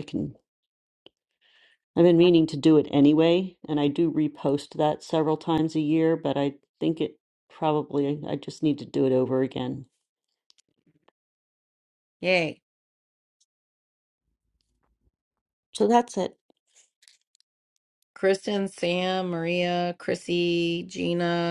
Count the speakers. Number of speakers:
2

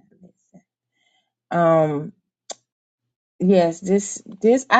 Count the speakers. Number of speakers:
1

